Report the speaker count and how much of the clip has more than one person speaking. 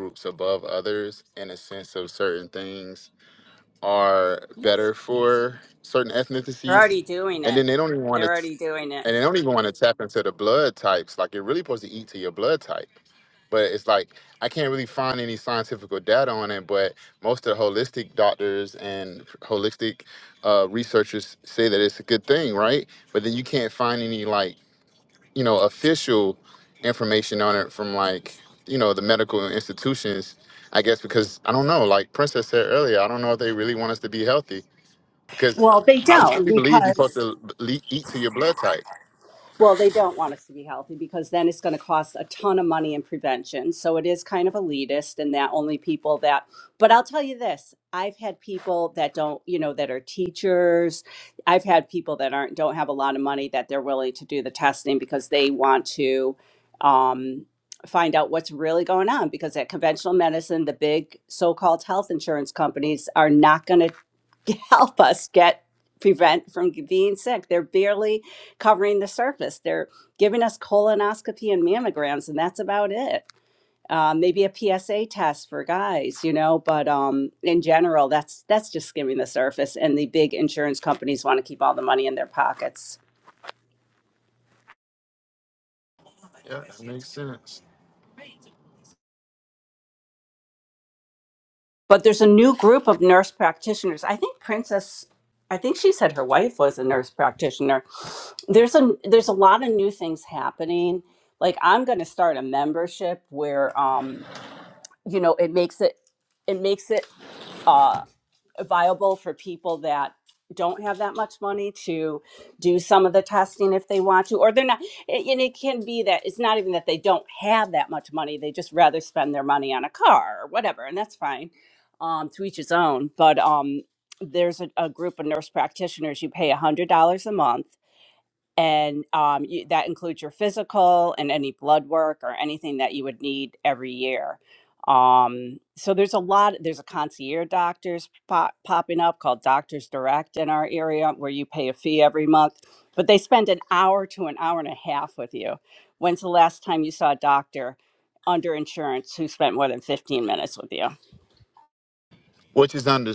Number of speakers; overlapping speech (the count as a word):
two, about 1%